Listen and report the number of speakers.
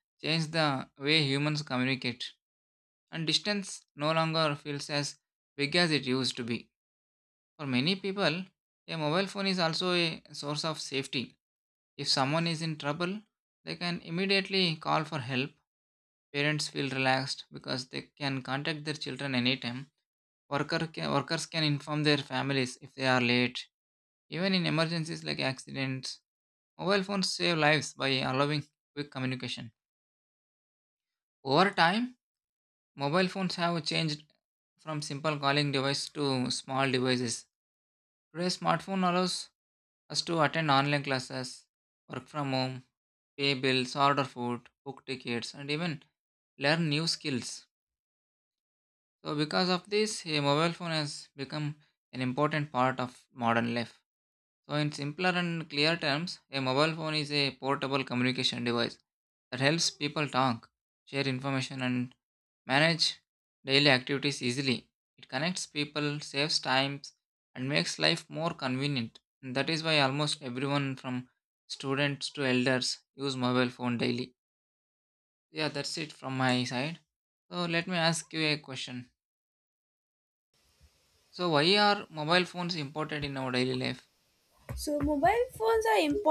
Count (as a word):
two